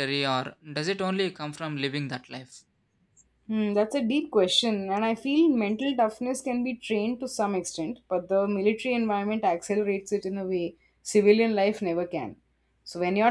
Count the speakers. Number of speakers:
two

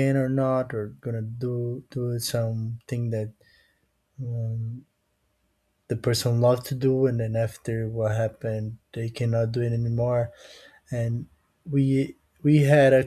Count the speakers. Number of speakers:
one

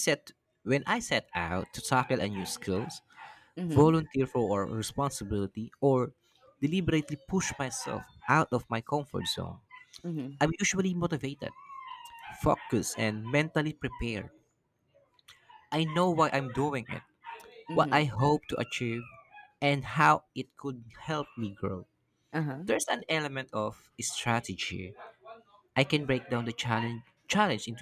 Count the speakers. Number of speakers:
two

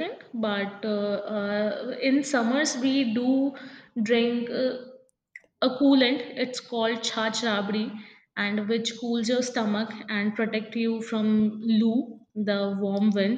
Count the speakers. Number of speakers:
one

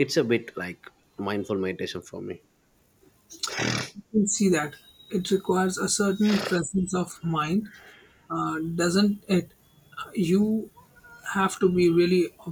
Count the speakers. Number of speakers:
two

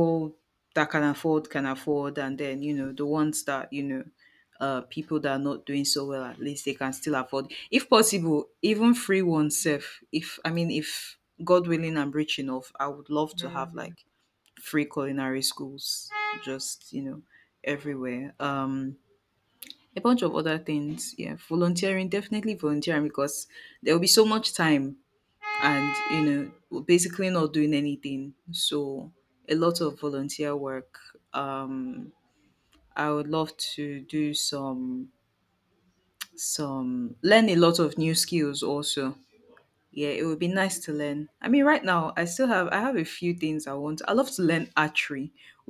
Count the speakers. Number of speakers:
one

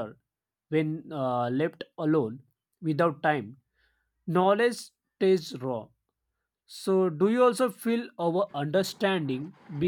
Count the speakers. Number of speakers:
one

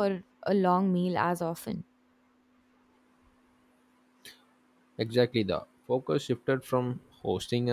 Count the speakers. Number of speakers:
two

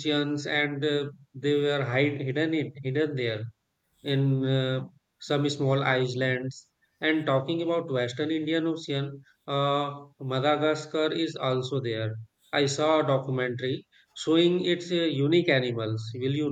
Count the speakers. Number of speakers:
one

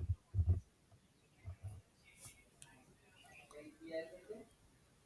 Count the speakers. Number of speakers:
zero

